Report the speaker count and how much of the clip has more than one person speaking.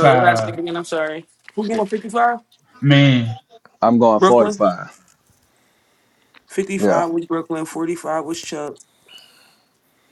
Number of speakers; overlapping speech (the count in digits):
3, about 12%